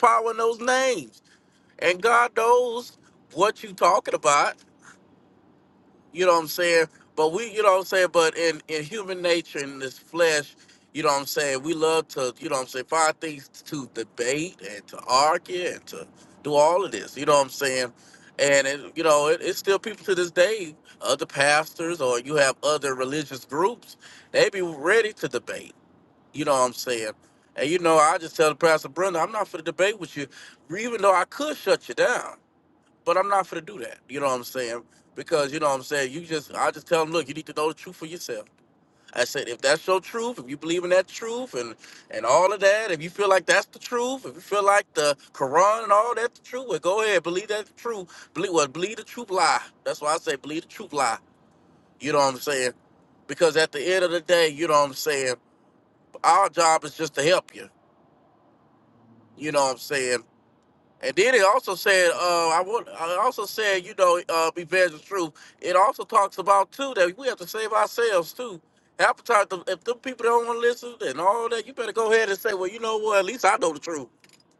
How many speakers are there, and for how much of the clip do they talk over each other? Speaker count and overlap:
1, no overlap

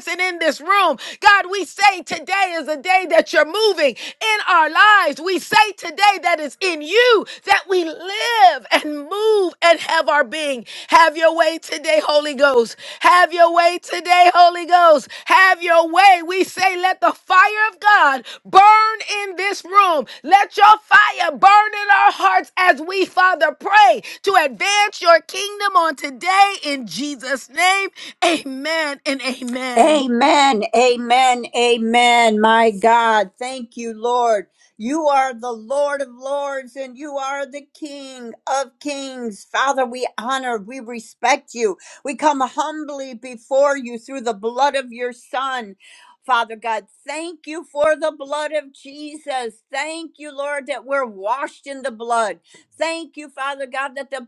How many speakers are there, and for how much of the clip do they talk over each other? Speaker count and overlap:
2, under 1%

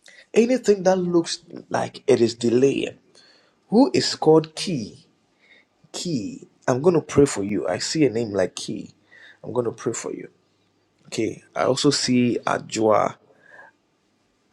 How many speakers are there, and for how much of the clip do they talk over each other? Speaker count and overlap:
1, no overlap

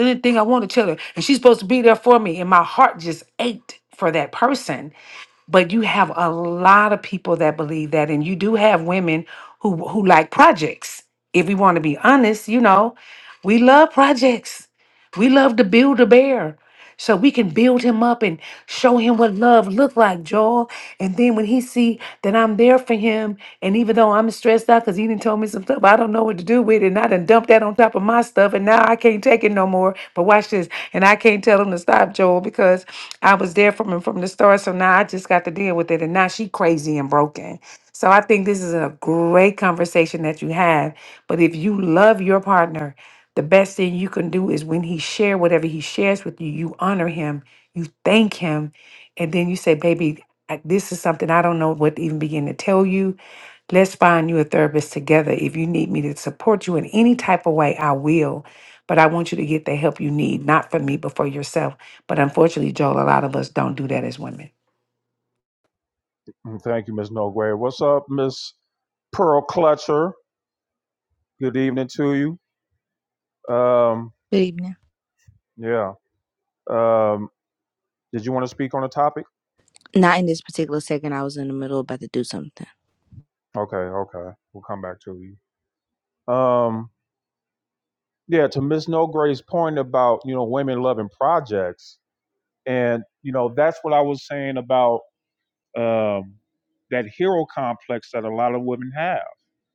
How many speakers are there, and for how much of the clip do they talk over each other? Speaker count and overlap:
3, no overlap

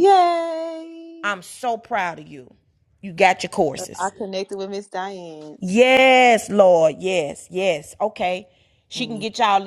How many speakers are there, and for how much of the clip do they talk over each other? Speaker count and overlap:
2, about 5%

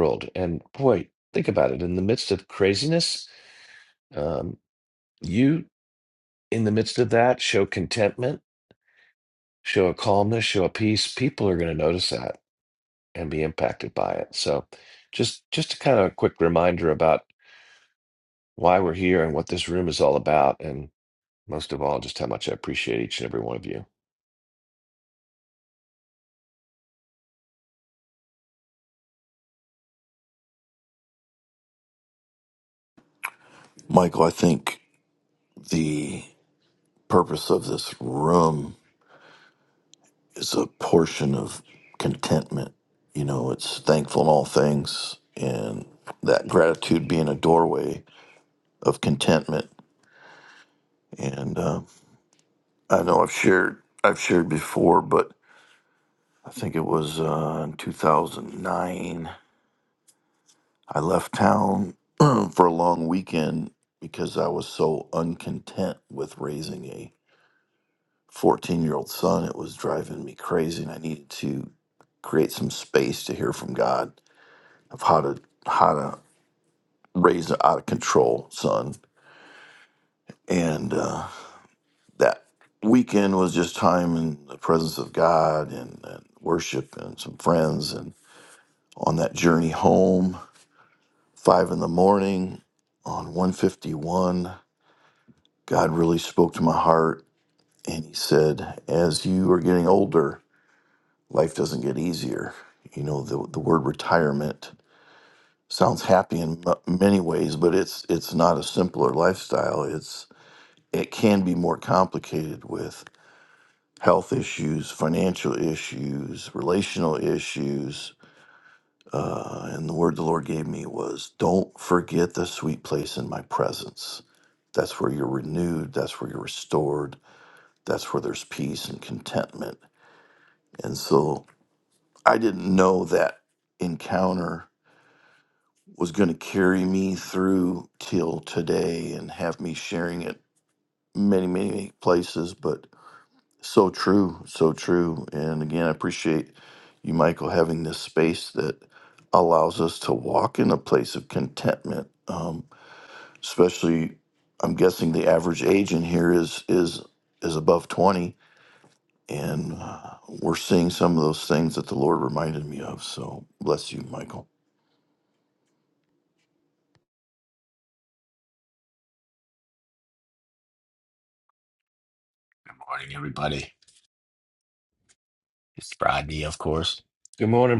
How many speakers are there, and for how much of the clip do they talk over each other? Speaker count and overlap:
3, under 1%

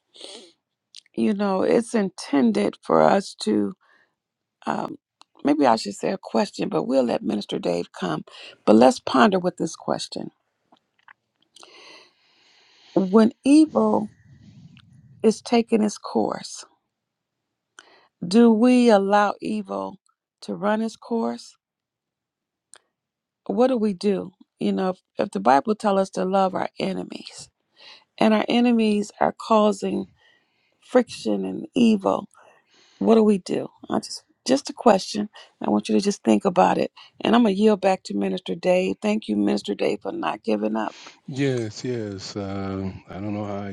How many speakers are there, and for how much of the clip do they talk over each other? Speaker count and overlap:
2, no overlap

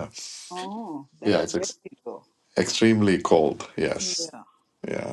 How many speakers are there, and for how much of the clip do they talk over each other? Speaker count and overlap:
2, about 12%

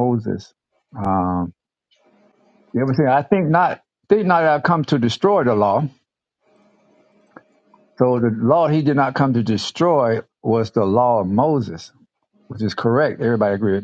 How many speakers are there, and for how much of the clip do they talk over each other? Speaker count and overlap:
1, no overlap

